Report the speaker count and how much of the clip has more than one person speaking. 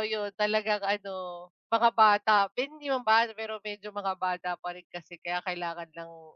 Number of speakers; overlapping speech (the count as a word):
one, no overlap